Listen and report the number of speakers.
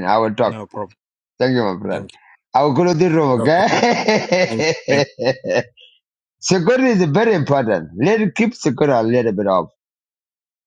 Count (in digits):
2